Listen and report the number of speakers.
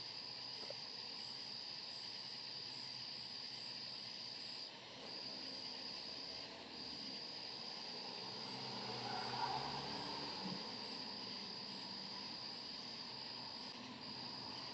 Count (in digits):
0